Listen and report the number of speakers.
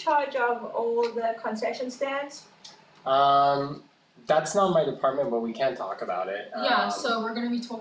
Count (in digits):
3